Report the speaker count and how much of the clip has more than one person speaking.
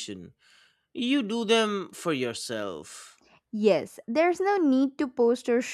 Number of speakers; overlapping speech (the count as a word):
two, no overlap